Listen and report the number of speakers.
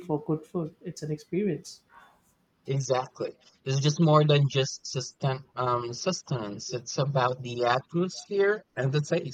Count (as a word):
two